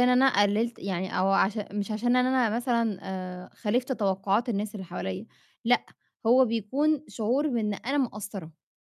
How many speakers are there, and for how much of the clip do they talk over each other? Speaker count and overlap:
one, no overlap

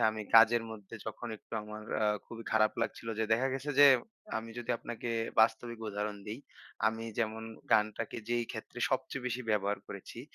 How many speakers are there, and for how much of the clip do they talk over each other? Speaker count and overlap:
one, no overlap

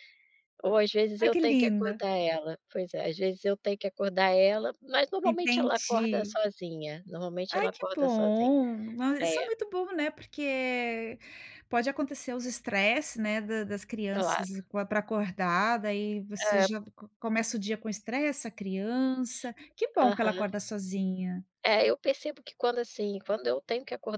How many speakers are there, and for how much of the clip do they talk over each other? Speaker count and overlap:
two, about 18%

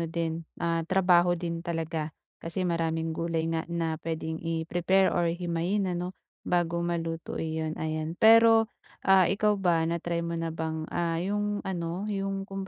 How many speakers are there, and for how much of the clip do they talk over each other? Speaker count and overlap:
one, no overlap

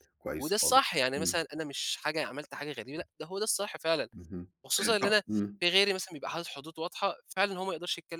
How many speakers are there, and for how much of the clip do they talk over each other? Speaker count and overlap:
two, about 10%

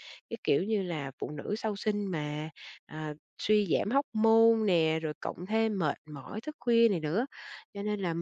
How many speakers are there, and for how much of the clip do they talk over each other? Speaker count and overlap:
one, no overlap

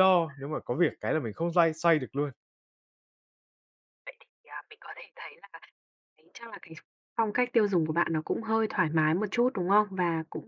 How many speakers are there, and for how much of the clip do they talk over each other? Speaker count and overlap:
two, no overlap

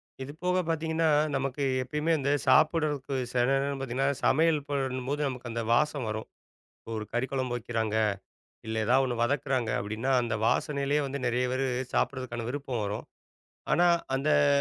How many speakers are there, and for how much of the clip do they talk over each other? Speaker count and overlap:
one, no overlap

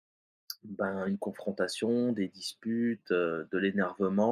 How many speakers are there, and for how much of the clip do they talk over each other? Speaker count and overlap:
one, no overlap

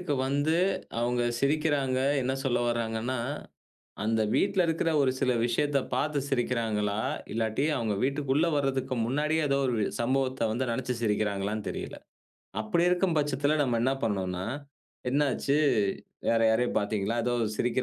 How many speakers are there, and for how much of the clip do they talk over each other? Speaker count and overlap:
one, no overlap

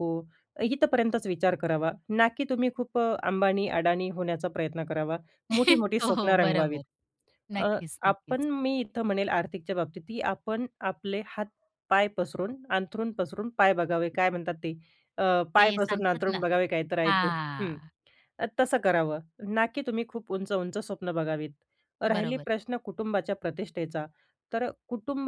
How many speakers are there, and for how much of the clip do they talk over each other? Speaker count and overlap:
two, about 14%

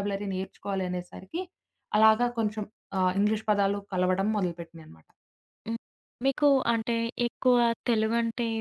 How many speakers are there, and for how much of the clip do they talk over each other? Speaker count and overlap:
two, no overlap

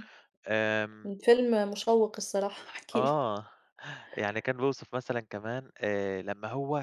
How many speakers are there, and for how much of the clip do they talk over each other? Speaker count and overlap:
two, about 3%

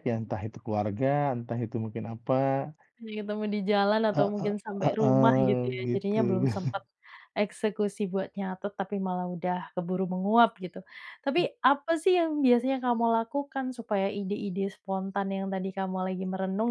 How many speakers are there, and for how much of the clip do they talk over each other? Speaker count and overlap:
two, about 14%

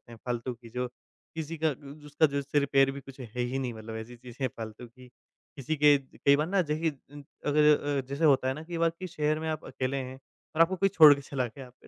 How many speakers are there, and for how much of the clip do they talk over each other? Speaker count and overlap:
one, no overlap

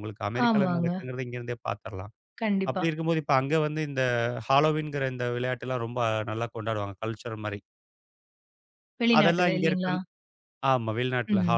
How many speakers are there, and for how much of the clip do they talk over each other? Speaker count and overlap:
two, about 18%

